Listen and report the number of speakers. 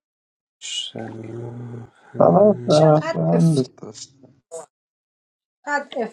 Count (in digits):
3